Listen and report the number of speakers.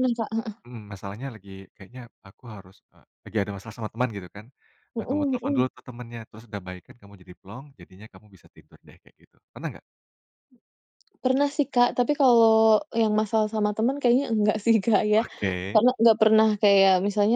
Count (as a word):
two